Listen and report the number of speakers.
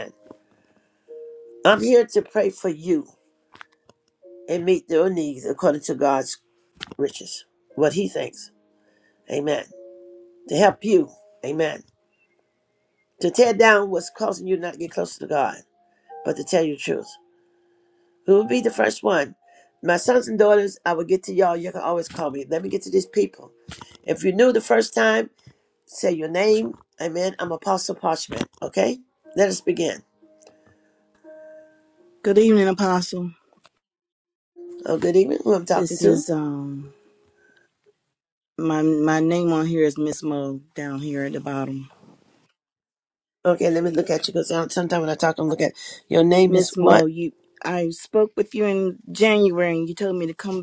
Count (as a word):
two